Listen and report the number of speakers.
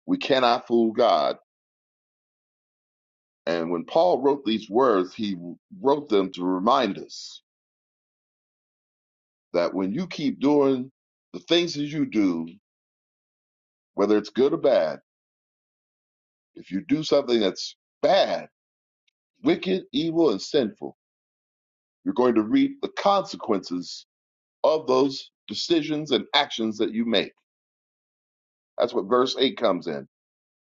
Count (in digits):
1